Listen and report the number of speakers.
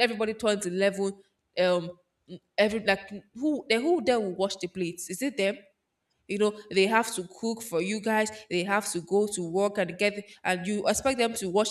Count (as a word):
one